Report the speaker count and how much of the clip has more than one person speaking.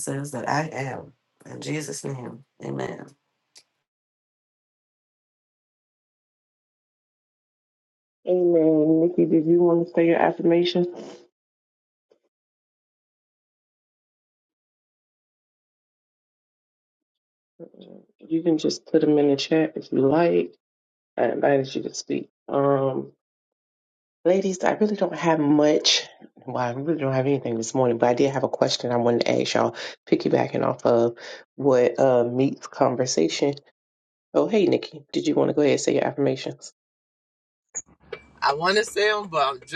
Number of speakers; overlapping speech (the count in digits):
3, no overlap